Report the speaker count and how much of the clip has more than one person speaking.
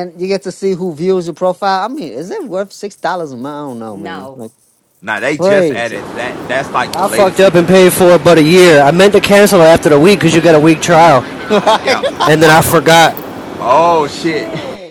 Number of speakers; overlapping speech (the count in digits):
4, about 35%